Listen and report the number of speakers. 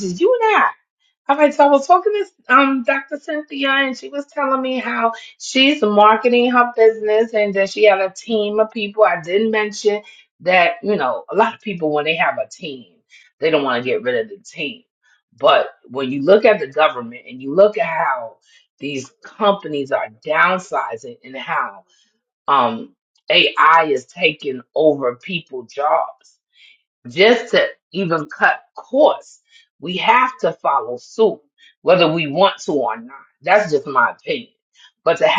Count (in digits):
1